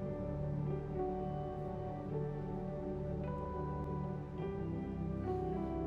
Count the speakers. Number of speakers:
zero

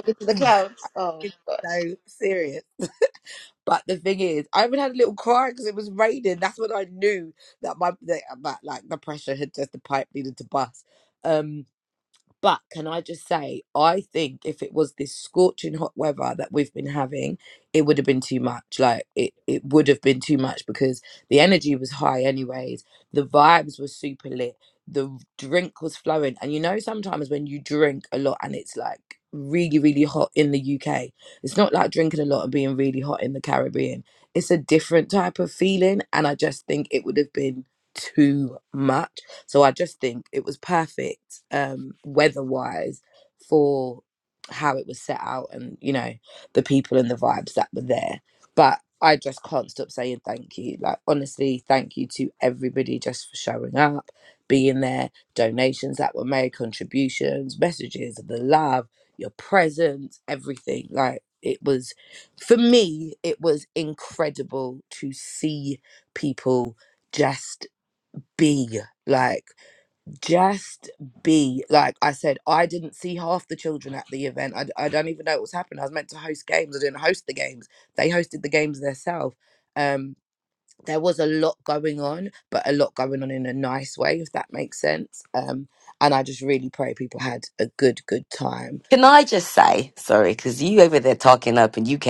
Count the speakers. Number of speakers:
three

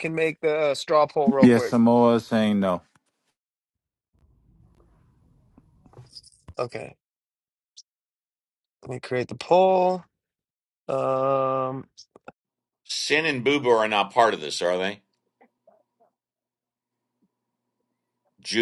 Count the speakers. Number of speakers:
three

